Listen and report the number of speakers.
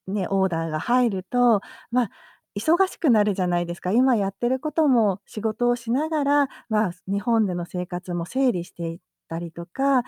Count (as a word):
one